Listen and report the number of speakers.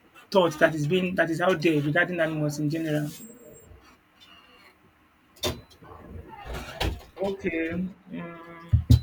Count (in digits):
2